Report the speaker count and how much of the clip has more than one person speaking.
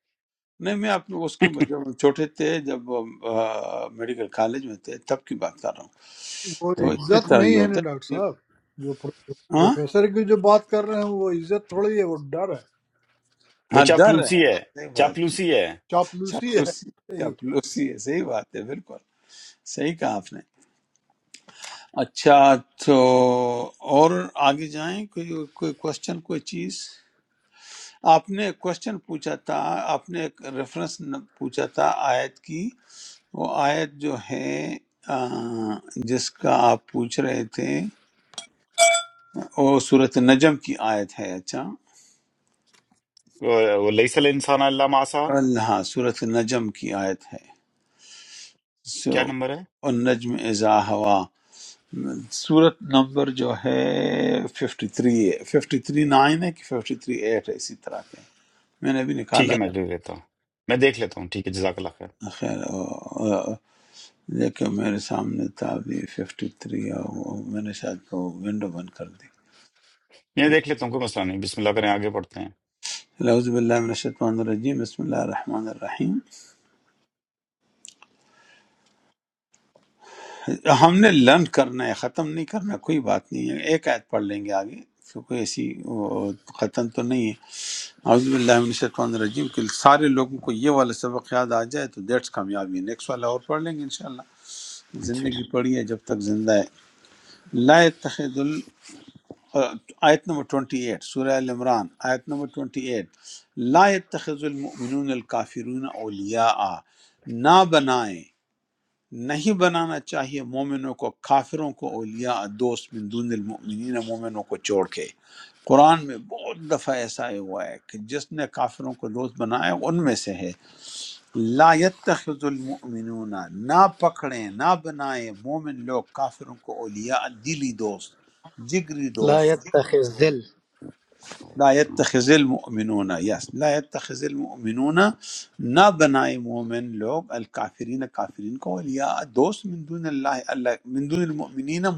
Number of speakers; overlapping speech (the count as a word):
four, about 3%